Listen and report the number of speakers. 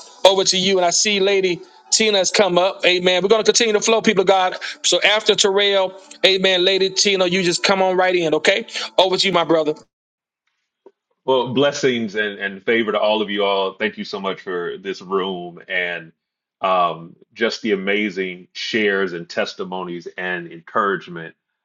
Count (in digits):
2